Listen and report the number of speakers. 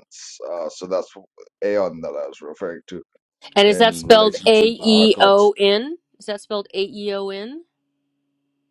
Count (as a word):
two